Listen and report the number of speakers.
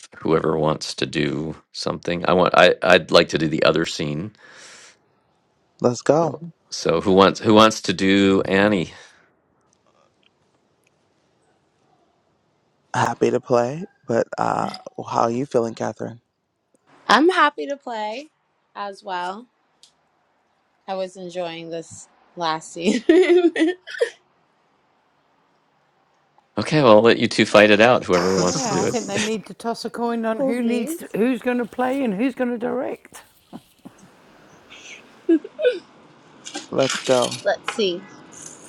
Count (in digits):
4